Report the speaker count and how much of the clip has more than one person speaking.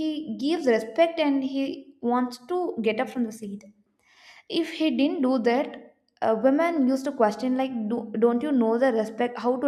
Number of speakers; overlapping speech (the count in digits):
1, no overlap